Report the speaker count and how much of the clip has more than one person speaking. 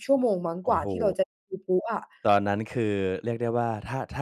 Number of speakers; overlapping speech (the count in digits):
2, about 12%